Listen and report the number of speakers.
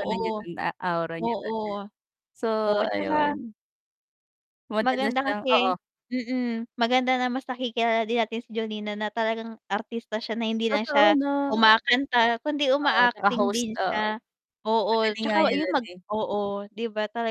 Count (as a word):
two